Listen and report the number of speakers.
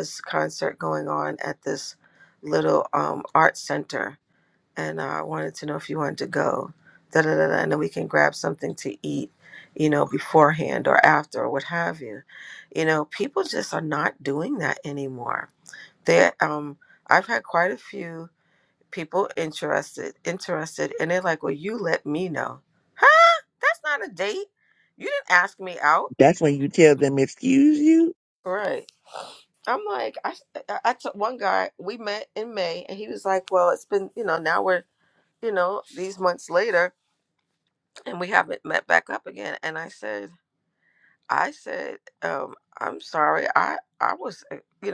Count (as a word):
two